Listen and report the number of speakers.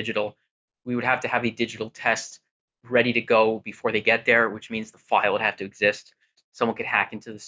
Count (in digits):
1